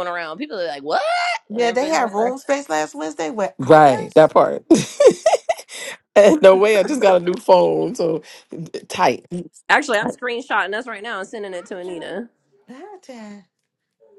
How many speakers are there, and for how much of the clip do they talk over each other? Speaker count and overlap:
three, about 12%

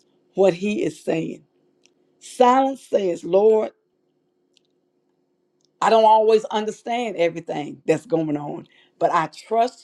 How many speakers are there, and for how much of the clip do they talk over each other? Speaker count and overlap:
one, no overlap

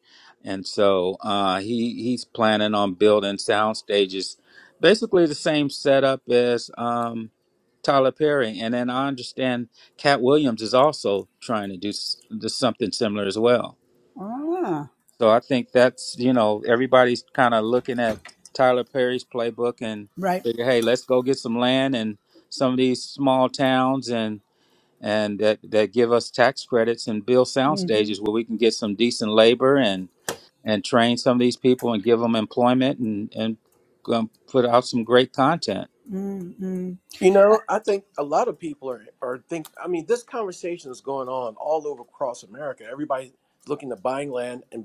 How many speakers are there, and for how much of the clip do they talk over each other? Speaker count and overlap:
three, about 1%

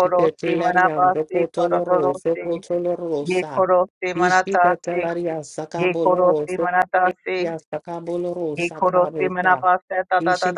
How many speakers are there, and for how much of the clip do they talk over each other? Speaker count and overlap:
two, about 61%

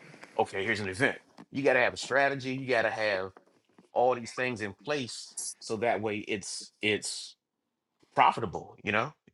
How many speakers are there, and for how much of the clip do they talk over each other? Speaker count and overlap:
one, no overlap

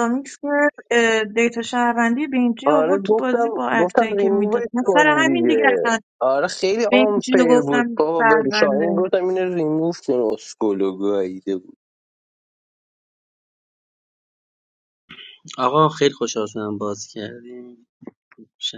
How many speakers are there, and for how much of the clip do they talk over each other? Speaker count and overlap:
three, about 28%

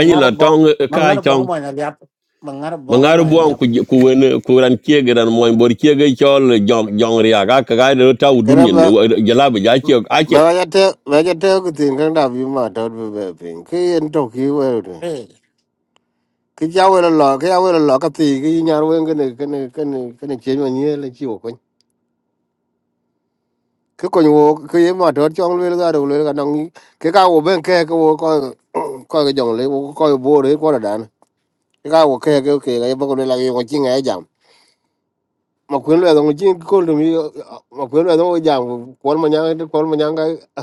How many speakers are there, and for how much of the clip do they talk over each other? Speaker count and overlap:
three, about 6%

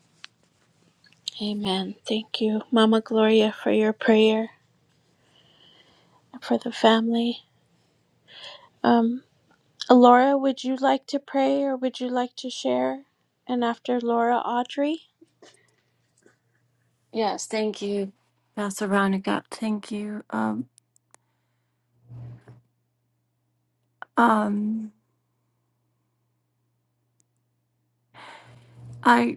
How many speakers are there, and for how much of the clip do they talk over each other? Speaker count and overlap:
two, no overlap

